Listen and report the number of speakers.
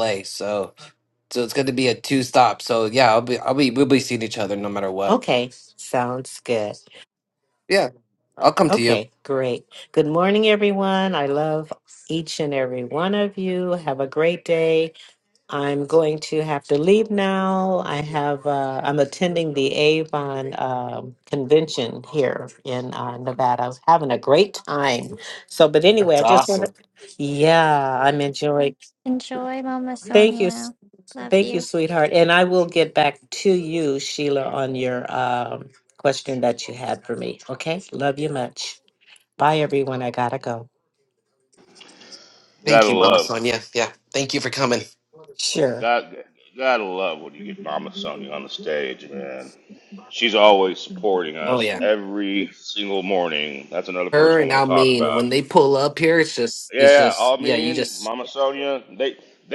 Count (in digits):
4